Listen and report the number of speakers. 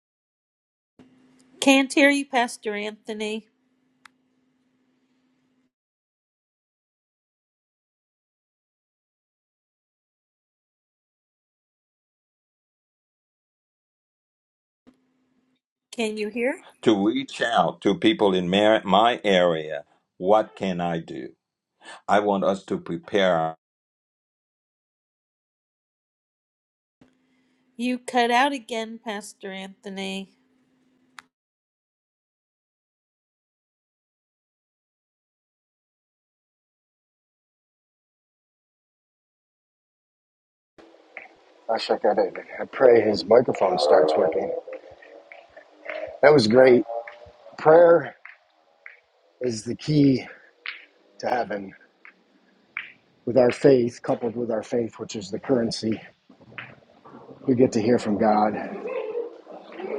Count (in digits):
3